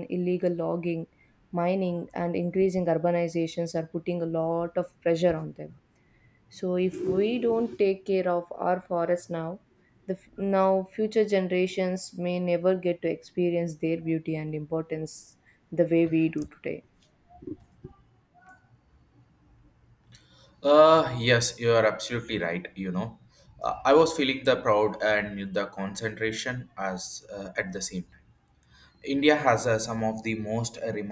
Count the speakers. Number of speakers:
2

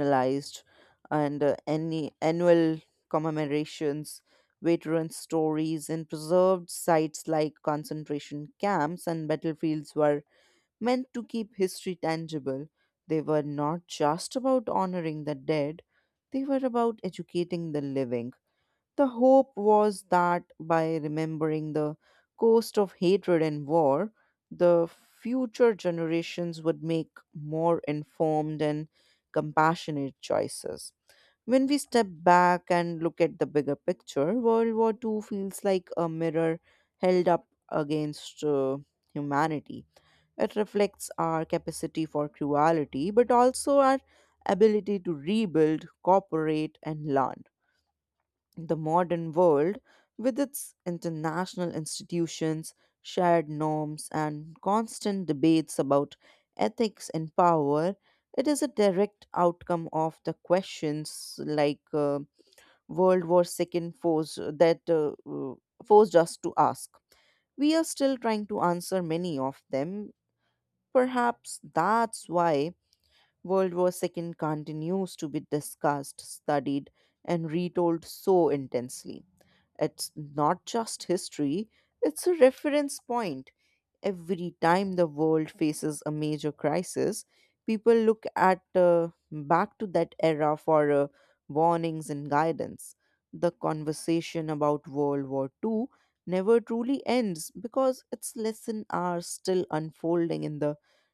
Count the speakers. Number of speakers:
1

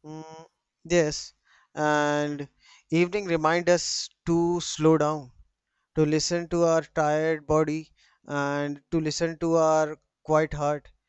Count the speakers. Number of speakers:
1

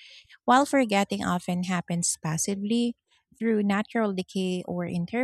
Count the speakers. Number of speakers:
1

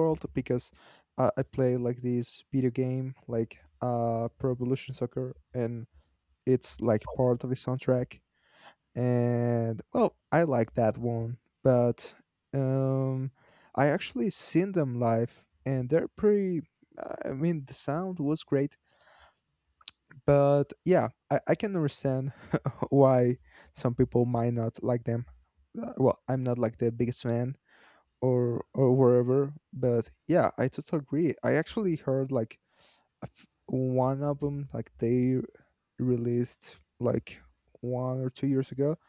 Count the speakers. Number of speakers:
1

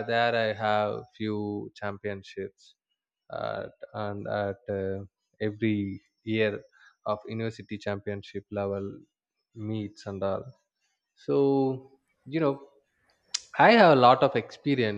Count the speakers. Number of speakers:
1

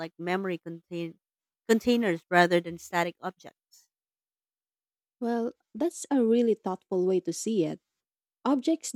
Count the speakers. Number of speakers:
2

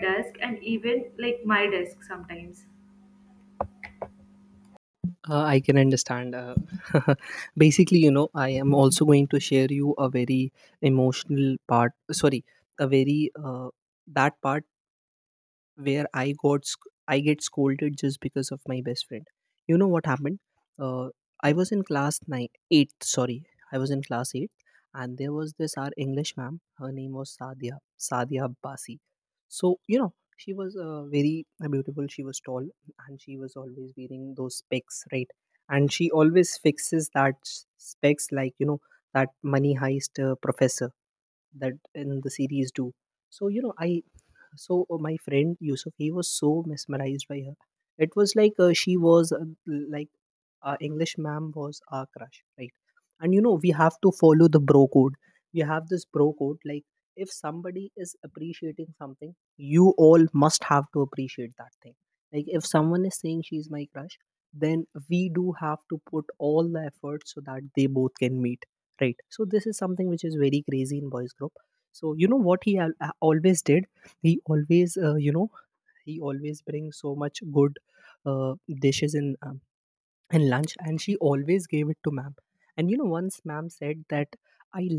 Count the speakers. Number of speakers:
2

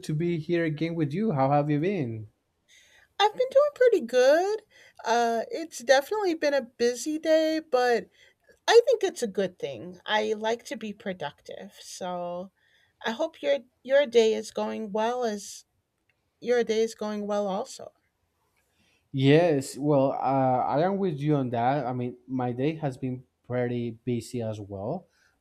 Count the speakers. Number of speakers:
2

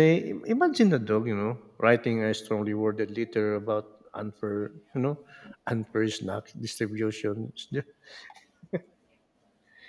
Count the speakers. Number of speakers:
1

